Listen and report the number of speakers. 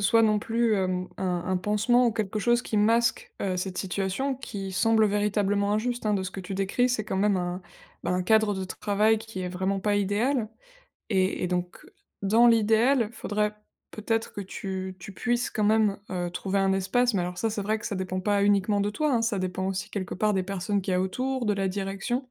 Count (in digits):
1